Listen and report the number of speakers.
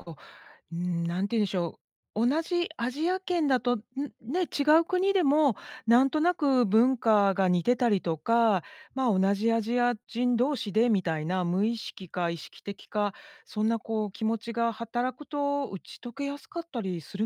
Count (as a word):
one